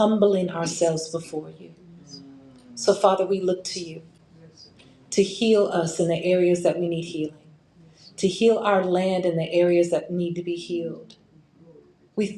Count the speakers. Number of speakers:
one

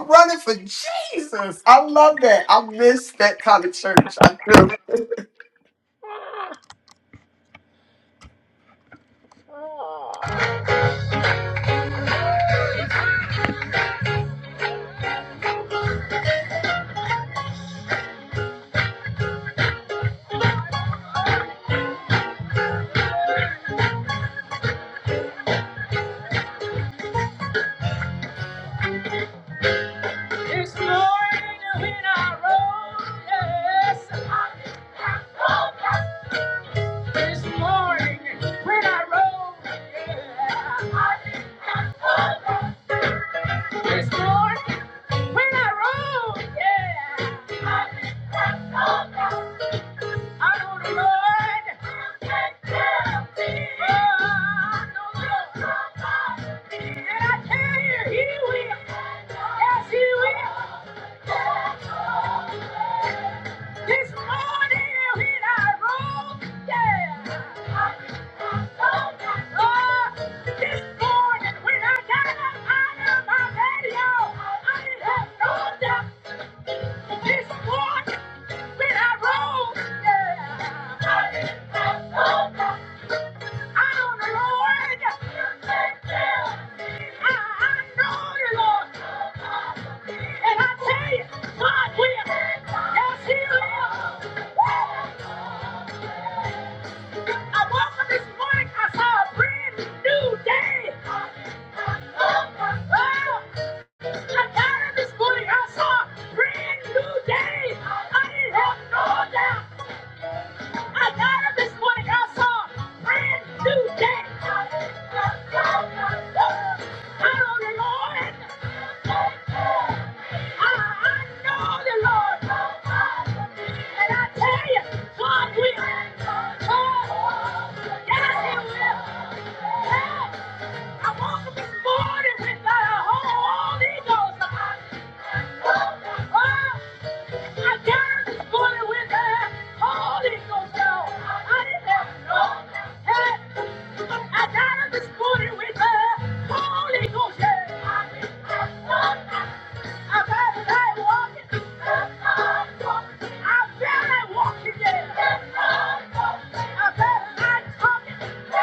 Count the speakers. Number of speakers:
two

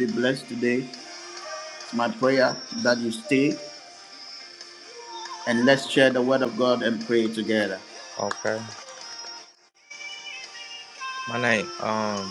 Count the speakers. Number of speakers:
two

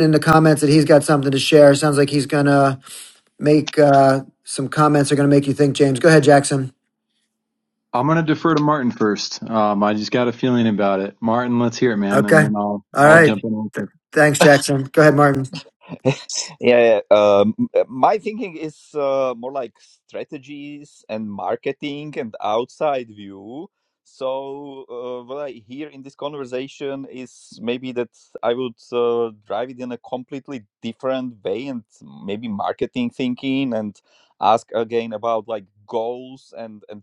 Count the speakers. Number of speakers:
three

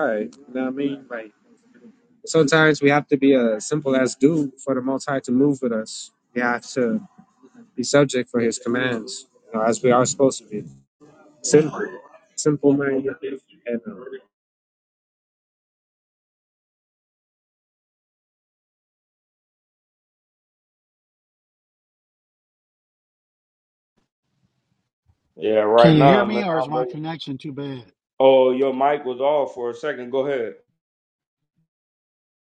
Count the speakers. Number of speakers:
three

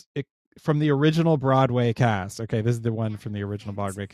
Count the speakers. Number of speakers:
one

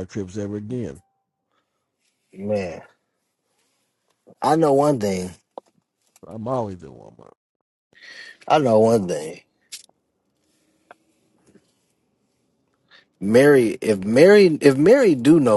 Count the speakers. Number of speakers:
two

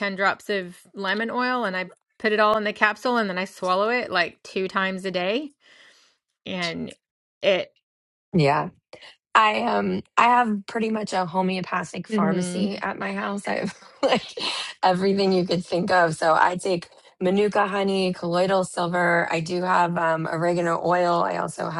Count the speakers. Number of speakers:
two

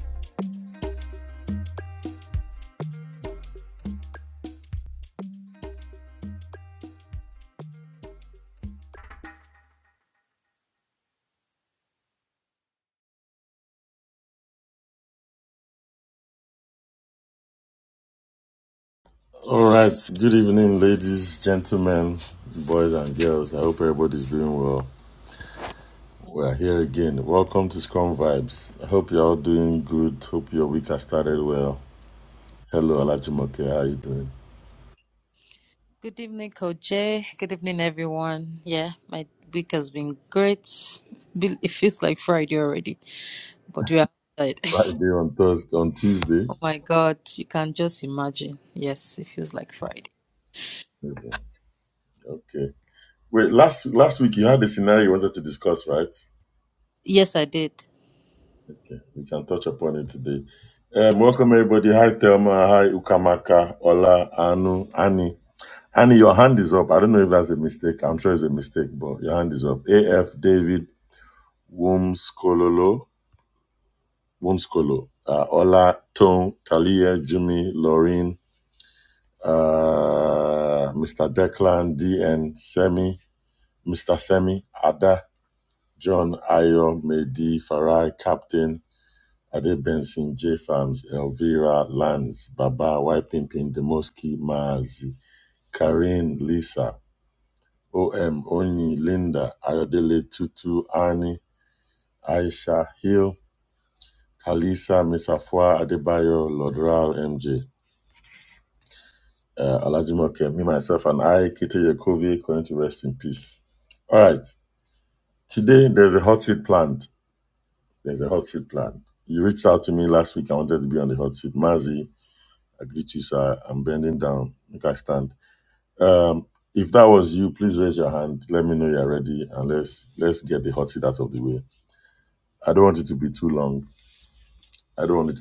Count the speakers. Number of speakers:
two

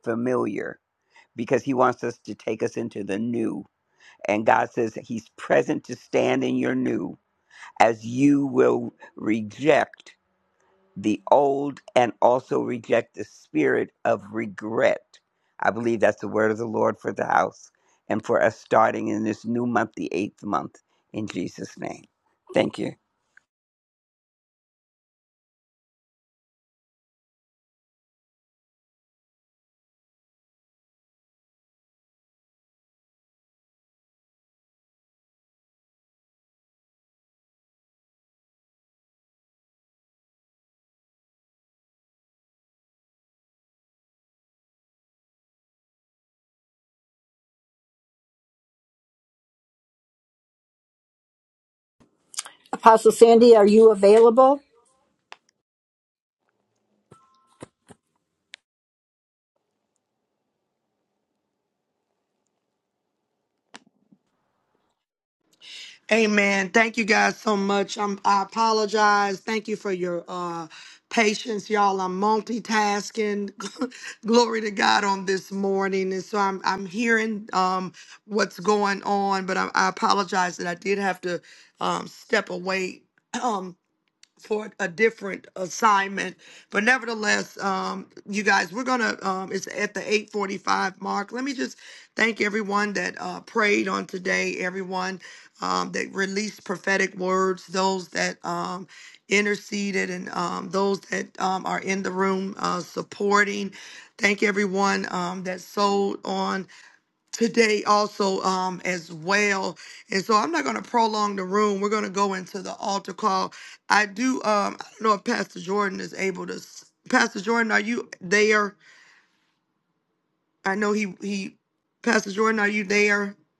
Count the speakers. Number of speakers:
three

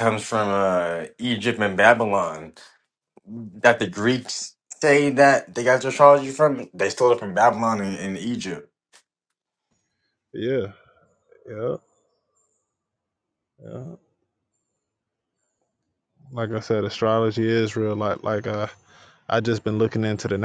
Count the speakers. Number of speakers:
two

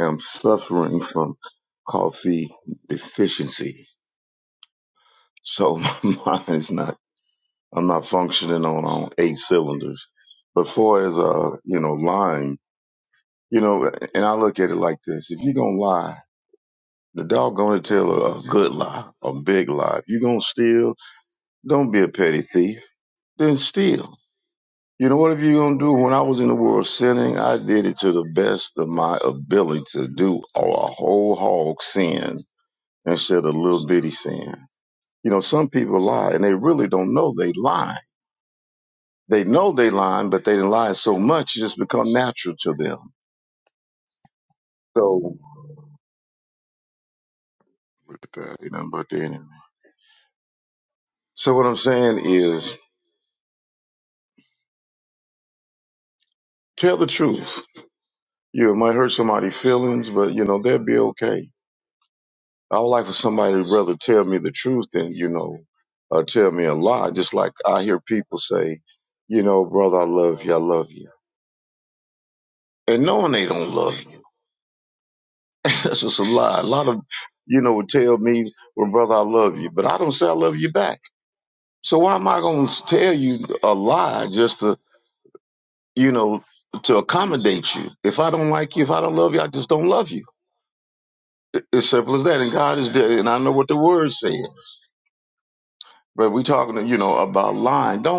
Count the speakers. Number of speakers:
one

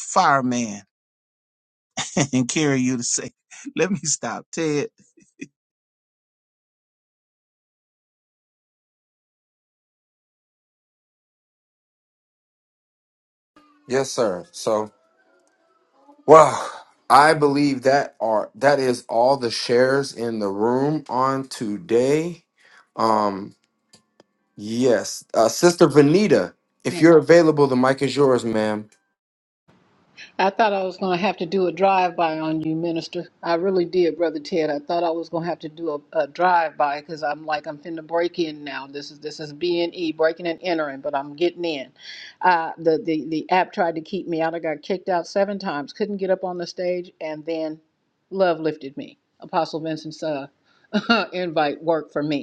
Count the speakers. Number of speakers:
three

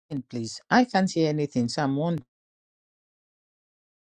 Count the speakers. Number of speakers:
one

